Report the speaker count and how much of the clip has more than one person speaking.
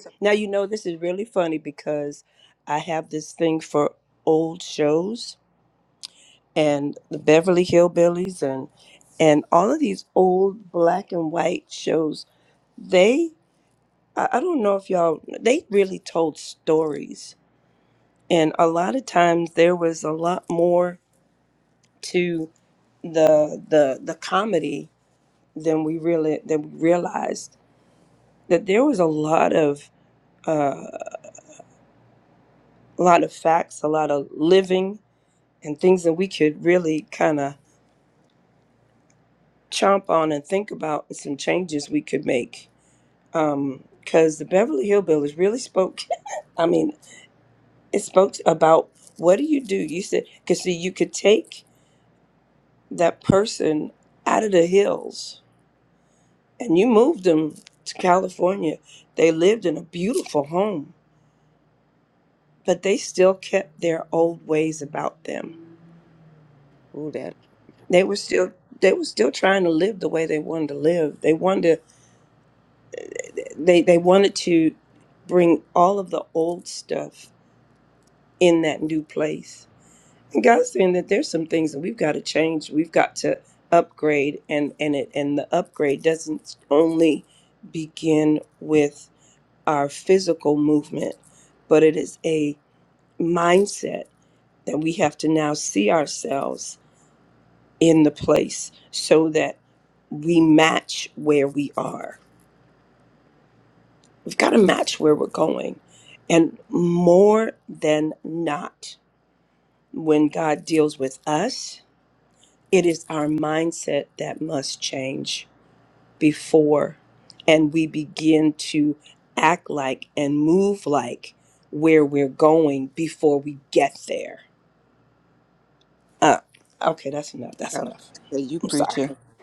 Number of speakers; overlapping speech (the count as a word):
two, about 1%